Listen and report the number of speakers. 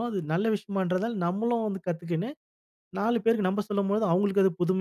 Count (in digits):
1